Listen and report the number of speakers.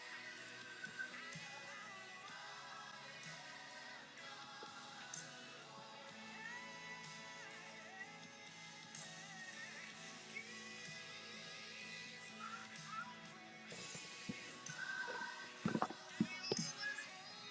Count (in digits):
0